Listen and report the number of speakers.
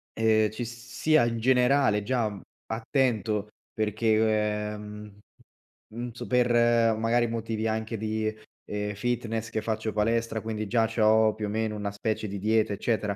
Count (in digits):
1